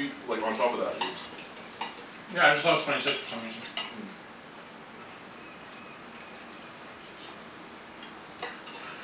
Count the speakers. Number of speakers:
two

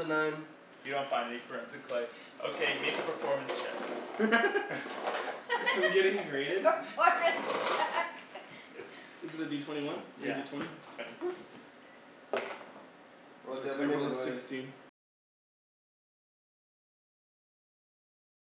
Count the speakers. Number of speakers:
four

